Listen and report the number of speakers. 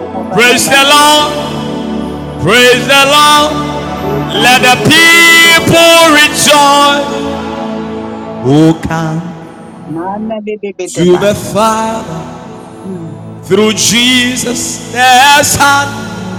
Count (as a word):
two